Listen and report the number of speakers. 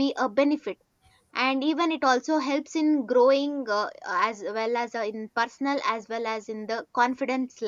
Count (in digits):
1